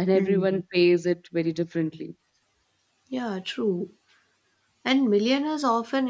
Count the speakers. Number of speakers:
two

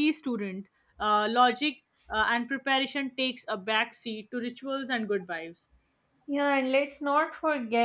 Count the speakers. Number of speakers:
two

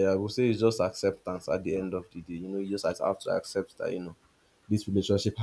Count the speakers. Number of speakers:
one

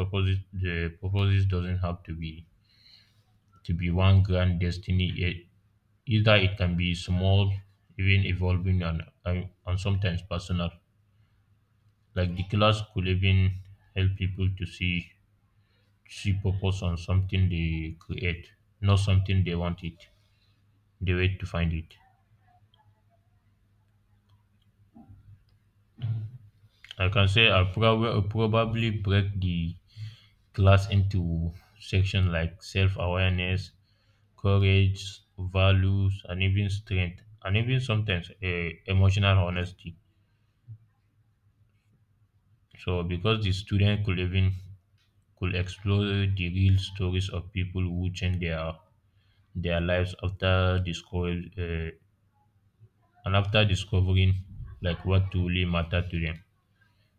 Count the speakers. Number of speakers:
one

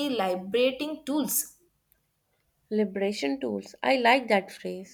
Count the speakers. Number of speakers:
two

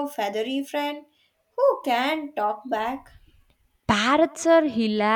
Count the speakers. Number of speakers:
two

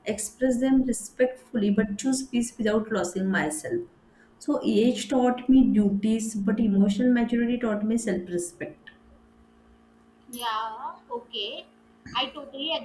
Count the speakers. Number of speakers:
two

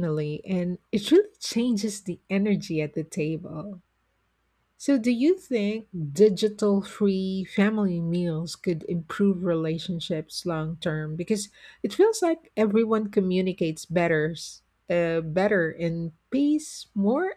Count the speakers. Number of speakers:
one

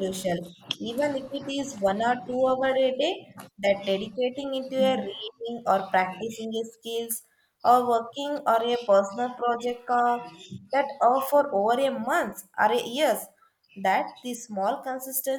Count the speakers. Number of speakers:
one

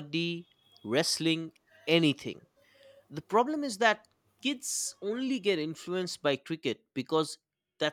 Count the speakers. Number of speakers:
one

